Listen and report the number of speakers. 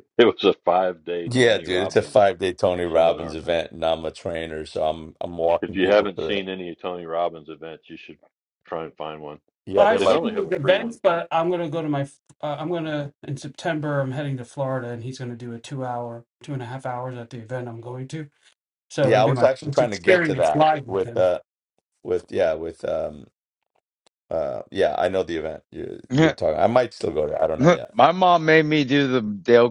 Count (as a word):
four